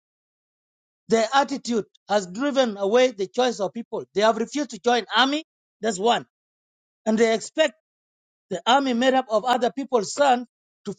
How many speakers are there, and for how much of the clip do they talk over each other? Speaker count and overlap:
one, no overlap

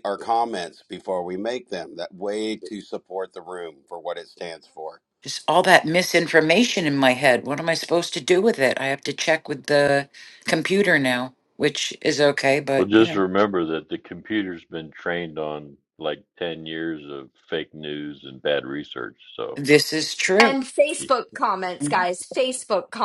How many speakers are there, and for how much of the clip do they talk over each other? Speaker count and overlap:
four, about 3%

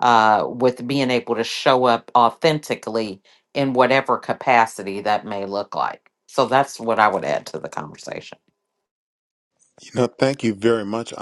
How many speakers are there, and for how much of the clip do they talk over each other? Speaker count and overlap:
two, no overlap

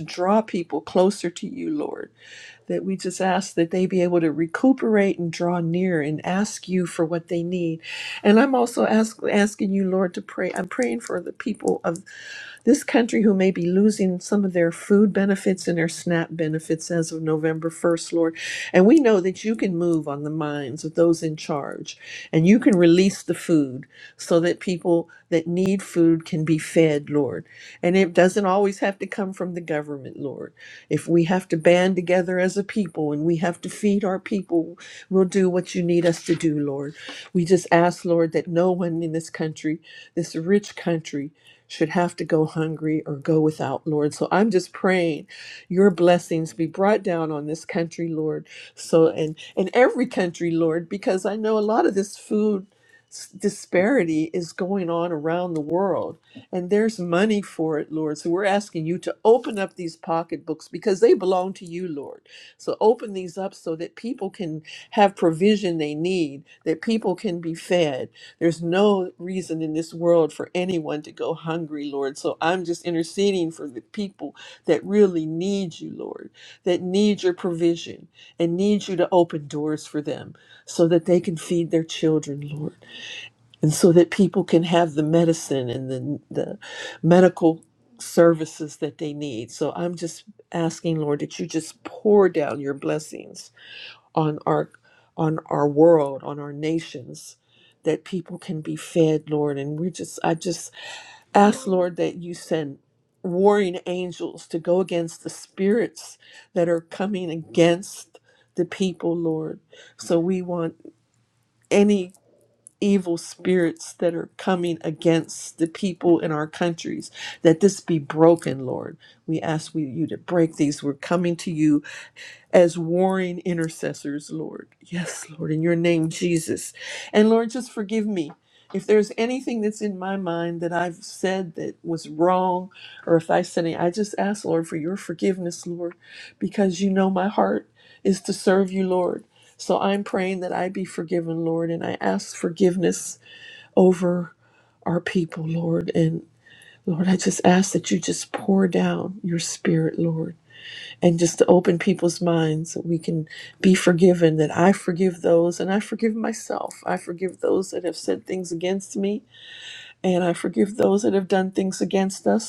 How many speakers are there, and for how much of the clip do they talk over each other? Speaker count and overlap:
one, no overlap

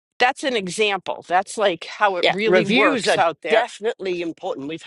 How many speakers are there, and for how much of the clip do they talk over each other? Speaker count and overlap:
two, about 29%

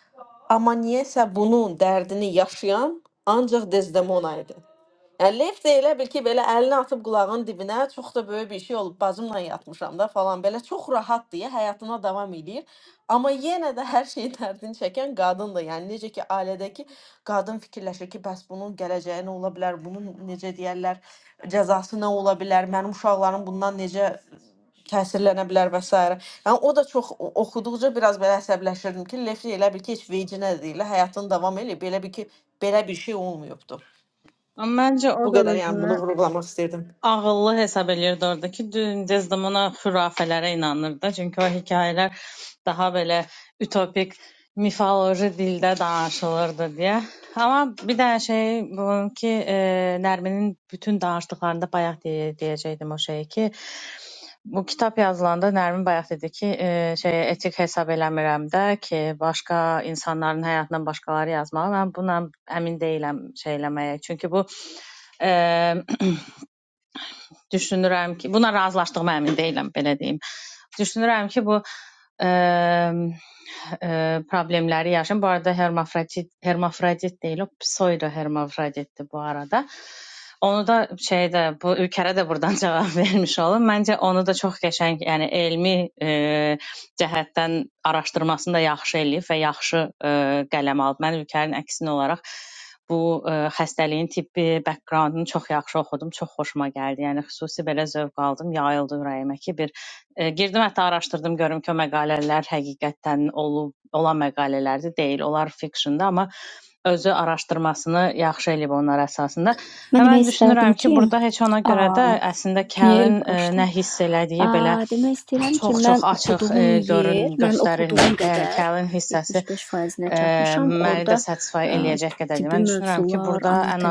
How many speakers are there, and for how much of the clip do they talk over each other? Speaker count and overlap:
three, about 8%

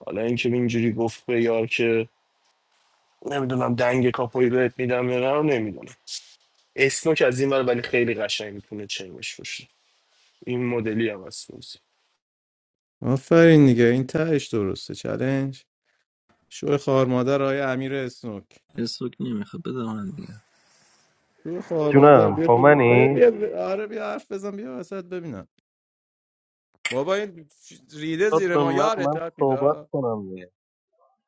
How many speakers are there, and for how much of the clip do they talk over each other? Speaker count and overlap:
four, about 9%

